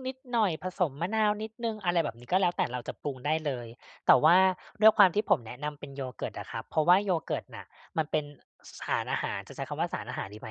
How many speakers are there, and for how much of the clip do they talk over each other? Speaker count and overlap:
1, no overlap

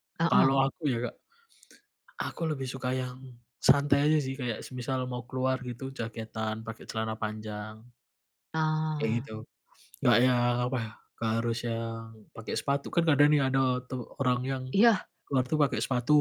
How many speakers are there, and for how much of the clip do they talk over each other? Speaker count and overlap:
2, about 3%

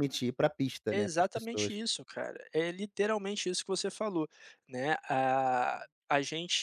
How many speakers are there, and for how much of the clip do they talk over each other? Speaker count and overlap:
2, about 13%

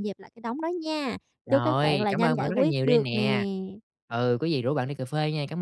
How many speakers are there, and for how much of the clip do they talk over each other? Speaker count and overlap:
2, about 31%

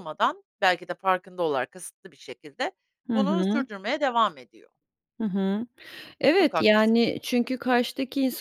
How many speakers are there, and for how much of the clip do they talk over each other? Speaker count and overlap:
2, about 10%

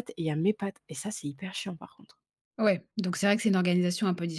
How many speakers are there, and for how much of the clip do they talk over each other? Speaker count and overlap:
2, no overlap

